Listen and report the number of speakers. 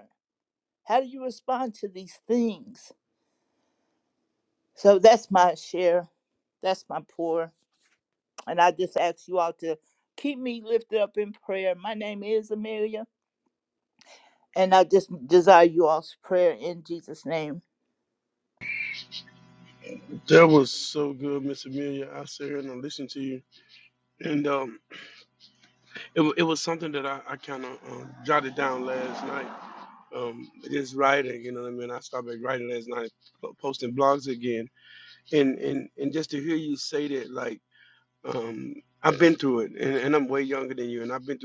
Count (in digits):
2